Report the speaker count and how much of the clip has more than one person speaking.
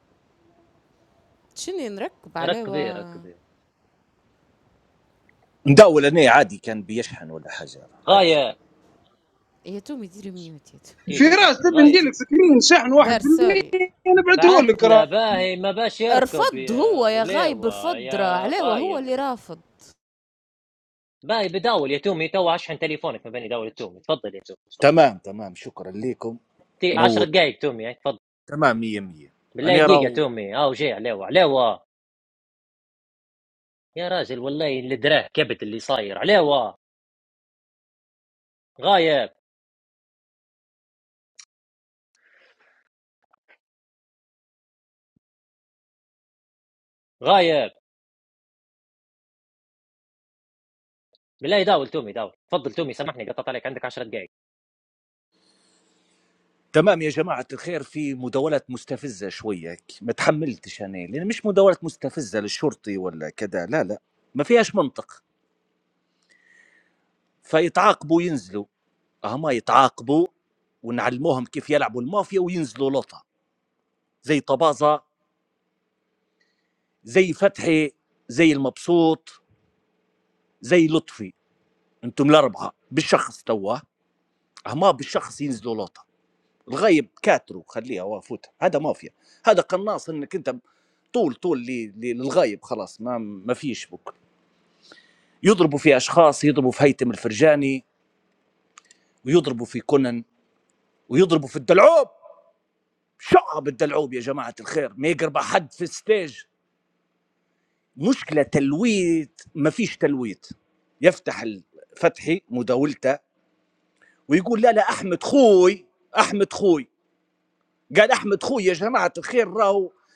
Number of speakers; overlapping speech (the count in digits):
4, about 5%